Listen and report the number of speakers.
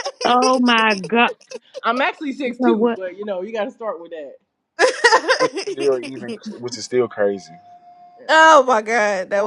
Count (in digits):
4